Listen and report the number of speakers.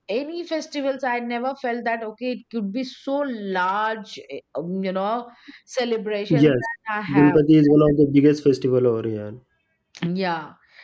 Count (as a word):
two